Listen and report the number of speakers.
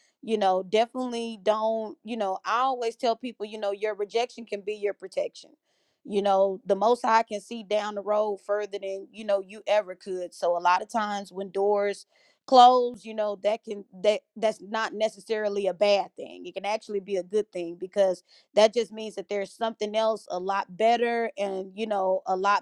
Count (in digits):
1